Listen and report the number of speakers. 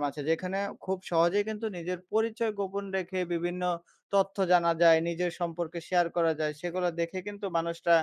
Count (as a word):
one